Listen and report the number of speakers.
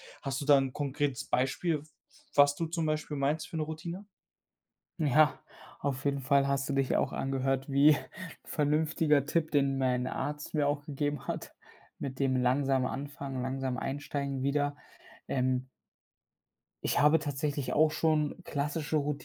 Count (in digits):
2